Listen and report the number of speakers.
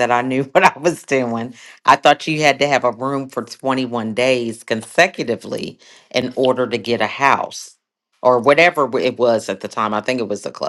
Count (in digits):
1